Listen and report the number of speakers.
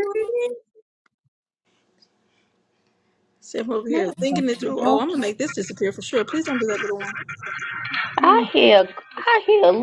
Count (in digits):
3